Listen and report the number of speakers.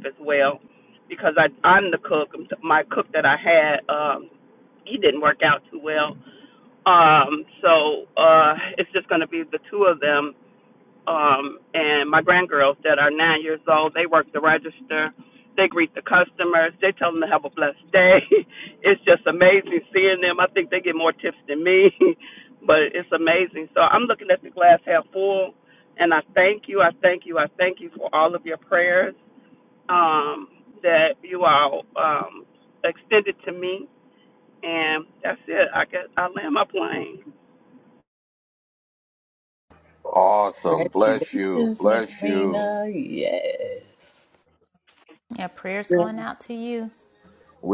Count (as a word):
four